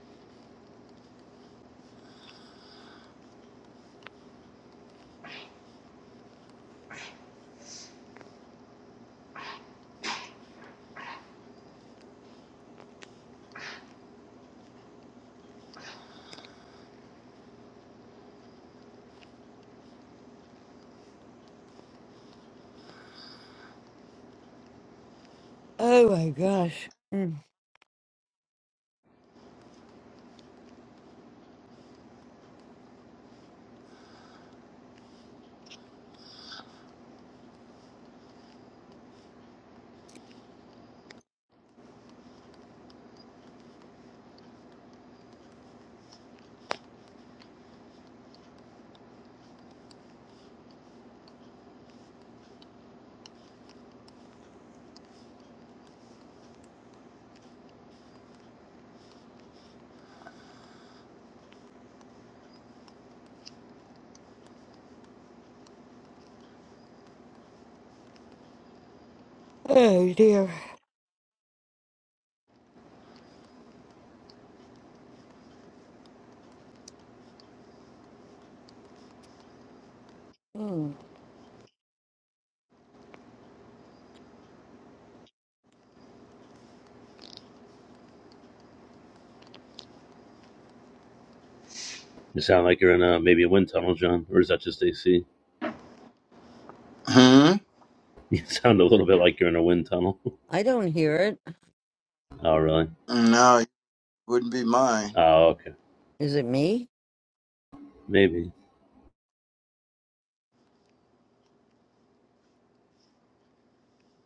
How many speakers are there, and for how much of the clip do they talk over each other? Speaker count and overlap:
three, no overlap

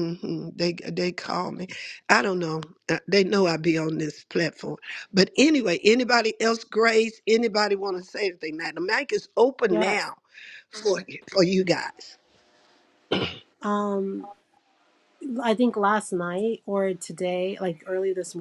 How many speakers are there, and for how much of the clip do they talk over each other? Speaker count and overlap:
two, about 2%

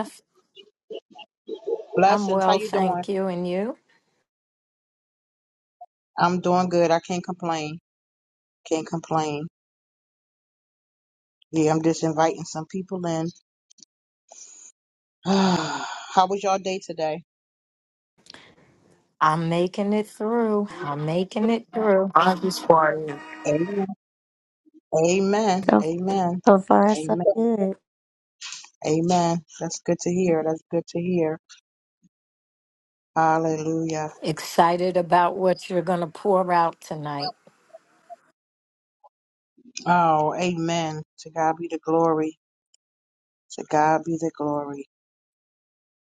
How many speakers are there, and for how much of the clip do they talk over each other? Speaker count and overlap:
four, about 4%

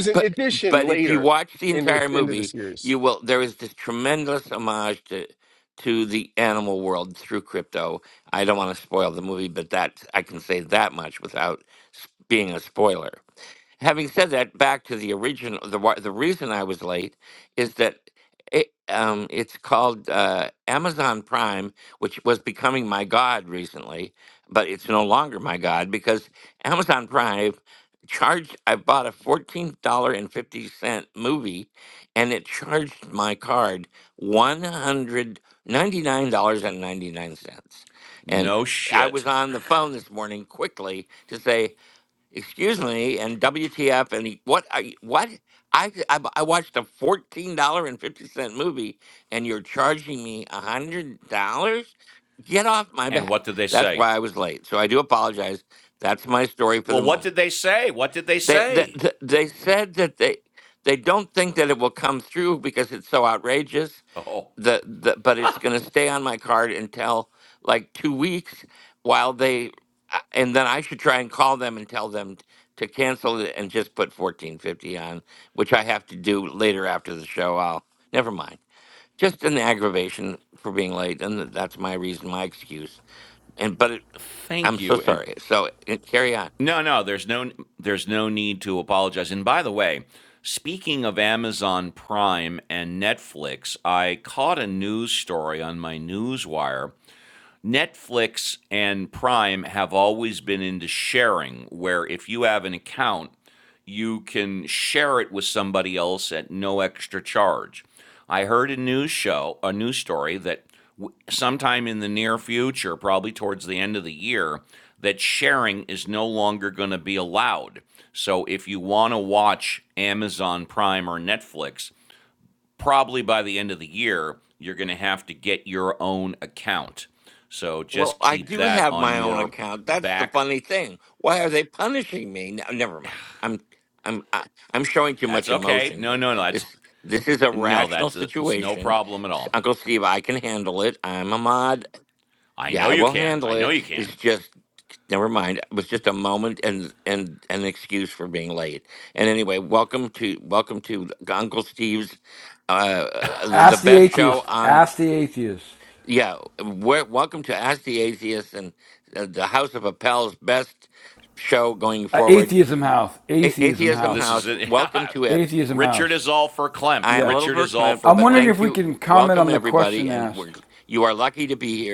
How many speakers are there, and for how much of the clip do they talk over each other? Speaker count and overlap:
four, about 10%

